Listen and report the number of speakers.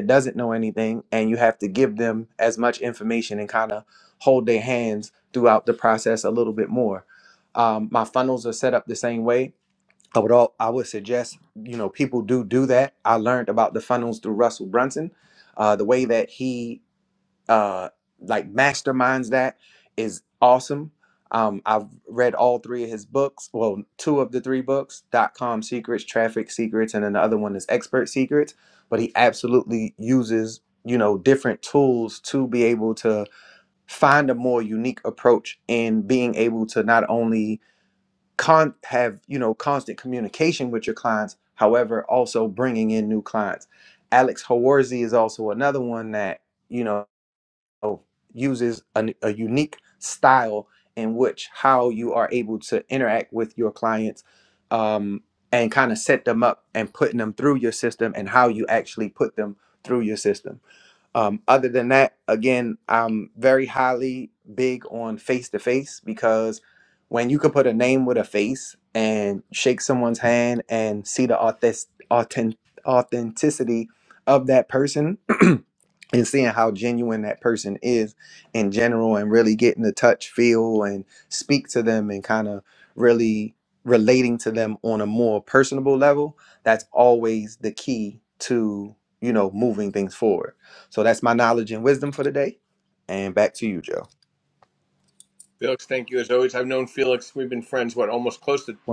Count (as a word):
two